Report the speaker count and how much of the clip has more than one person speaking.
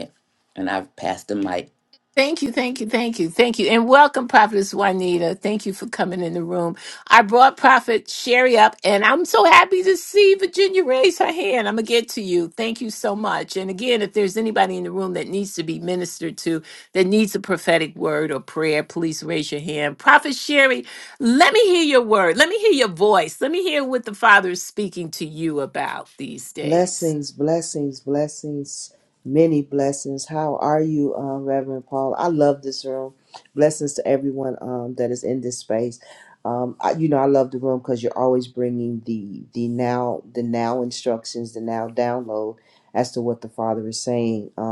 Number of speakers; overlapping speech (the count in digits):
3, under 1%